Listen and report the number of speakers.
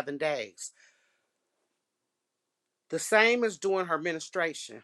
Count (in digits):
1